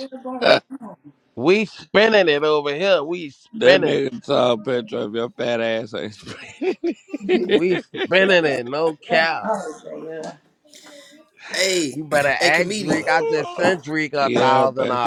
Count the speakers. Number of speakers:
4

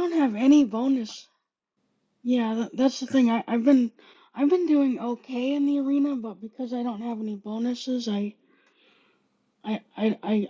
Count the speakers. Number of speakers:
1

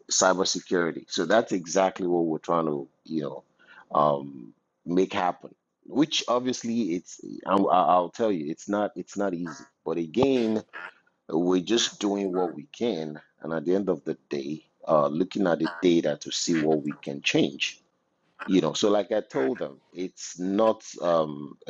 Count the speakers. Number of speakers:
1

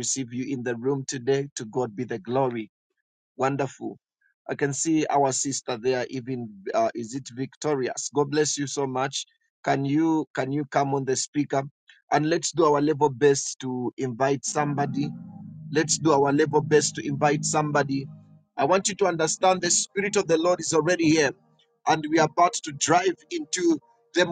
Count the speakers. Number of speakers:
1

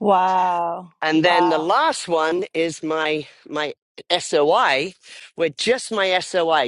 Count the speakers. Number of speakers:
2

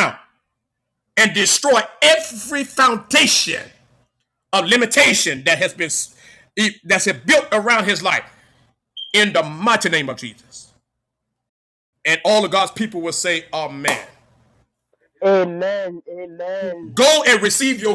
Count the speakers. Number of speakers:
2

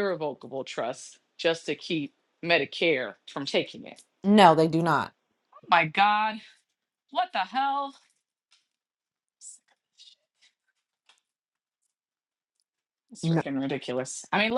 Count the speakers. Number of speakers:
2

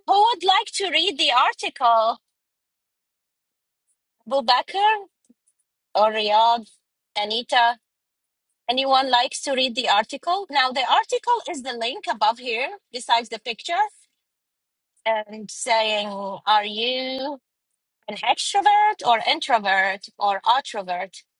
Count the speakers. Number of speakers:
1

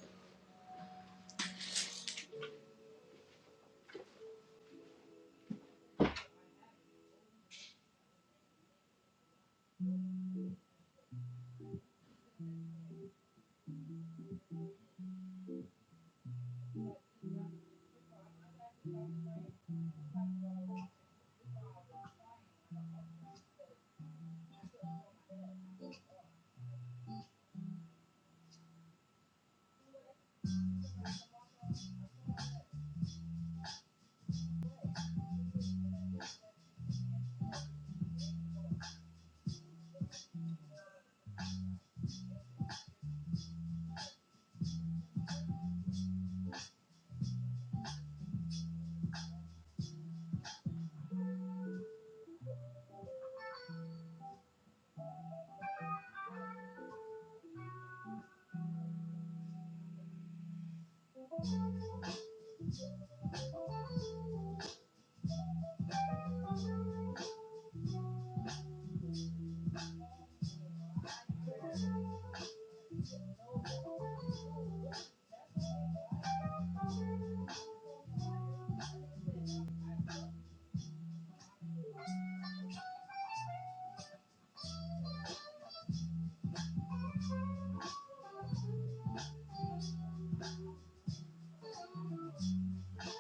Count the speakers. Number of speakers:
0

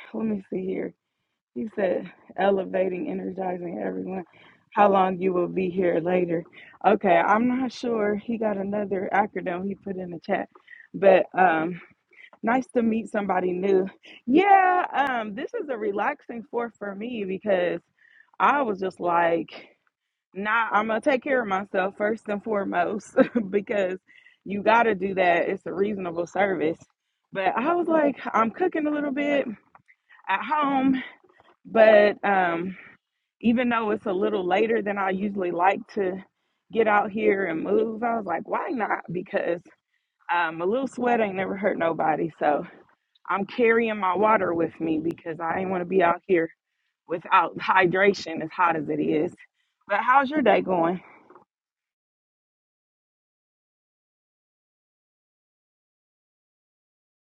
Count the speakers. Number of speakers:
1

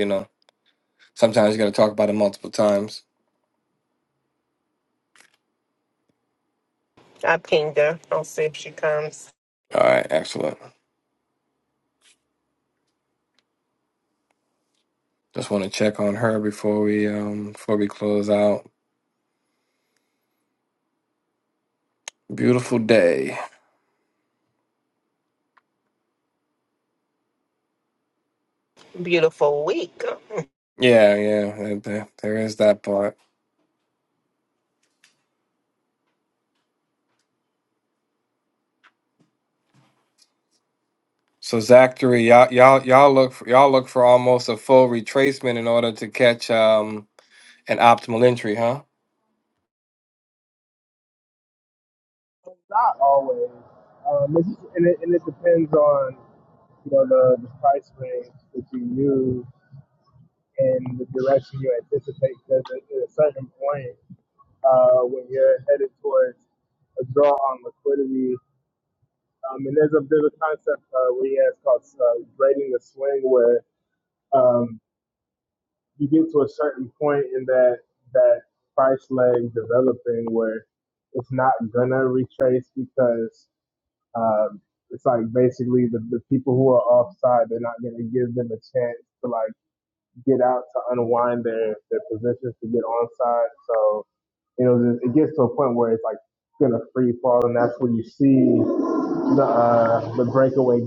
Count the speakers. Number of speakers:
3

